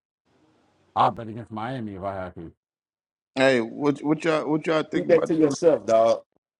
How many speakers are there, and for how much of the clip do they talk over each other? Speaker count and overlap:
three, about 8%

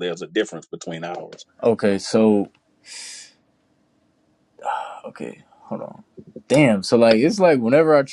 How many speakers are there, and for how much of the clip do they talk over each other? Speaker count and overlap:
two, no overlap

